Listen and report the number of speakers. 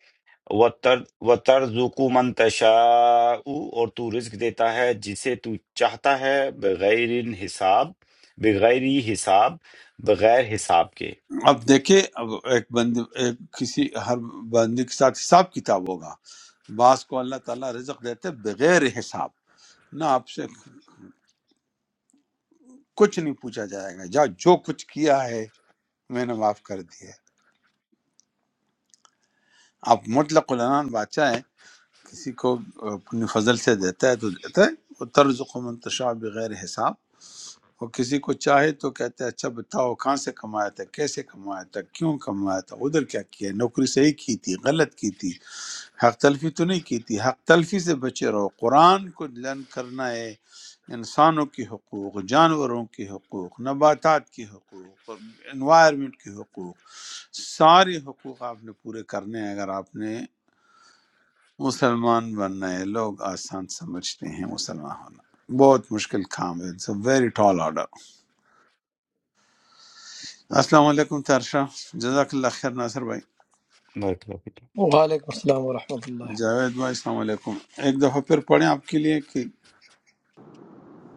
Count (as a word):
three